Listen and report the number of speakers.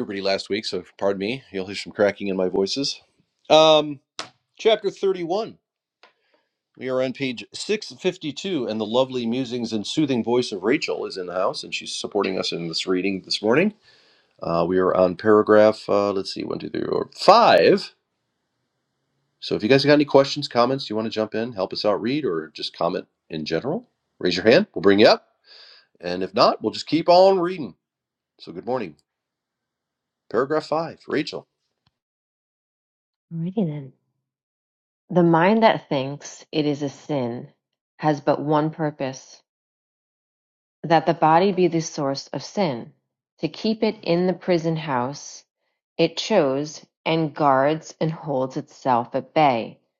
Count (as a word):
two